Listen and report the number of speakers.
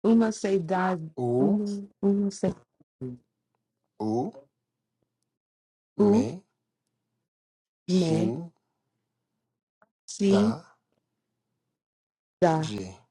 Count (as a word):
two